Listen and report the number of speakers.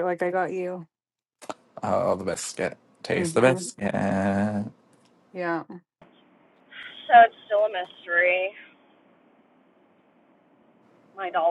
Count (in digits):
3